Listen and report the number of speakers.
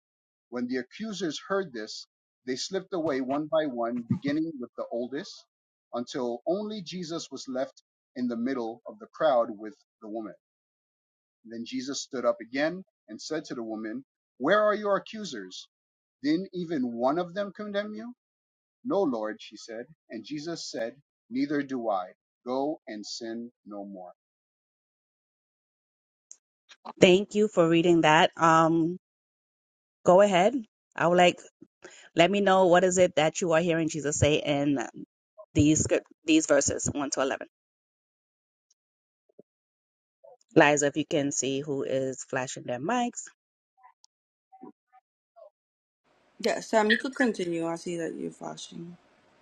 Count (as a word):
three